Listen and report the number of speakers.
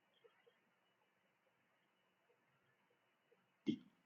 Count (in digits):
0